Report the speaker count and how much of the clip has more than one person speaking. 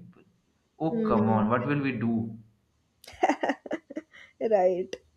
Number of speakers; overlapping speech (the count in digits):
2, about 11%